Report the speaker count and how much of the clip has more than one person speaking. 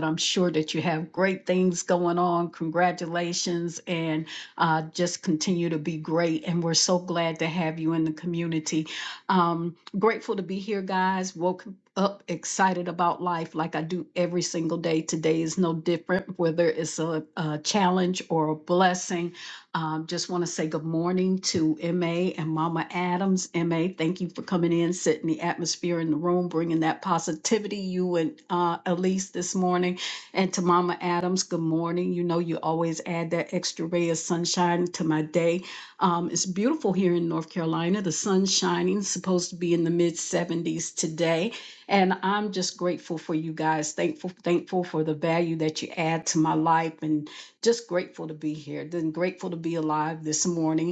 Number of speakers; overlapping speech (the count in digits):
1, no overlap